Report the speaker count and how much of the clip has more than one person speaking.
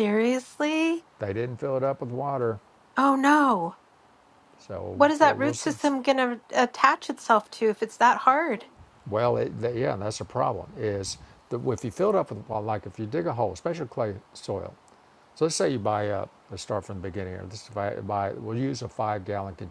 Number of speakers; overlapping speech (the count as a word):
two, about 4%